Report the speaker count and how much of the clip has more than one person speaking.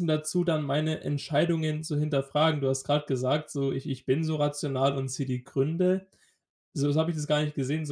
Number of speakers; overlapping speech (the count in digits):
1, no overlap